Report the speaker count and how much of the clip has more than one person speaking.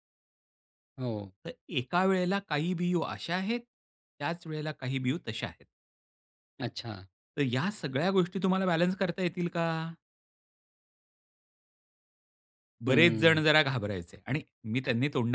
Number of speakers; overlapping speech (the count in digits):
2, about 4%